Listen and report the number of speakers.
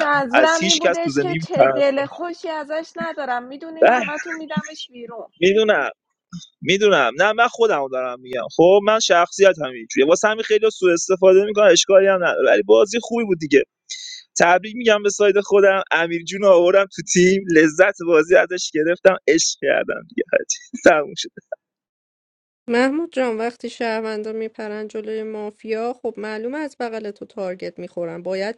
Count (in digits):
3